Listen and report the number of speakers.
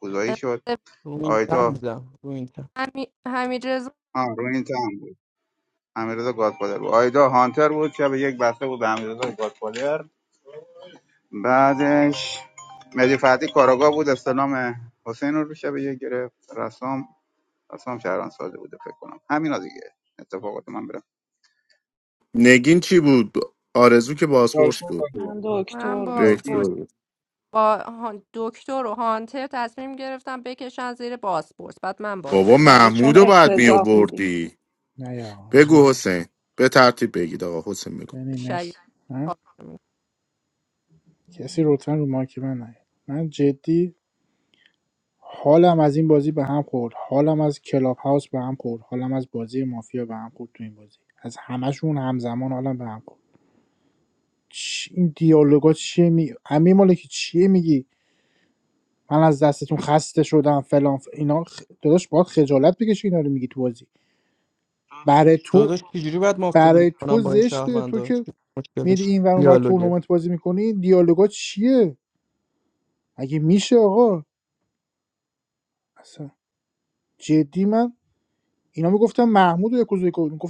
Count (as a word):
six